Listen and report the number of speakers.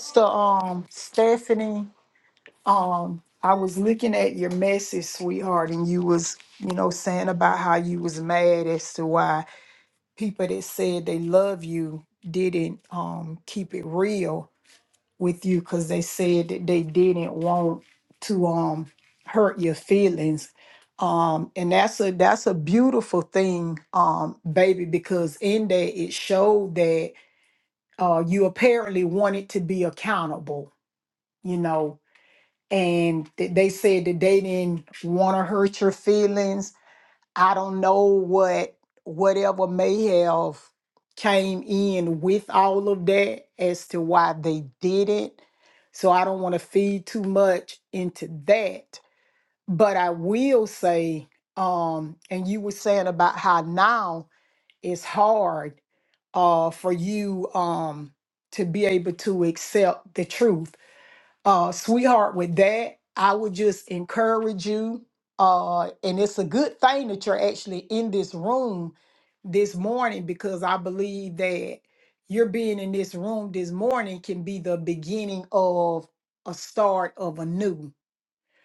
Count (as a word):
one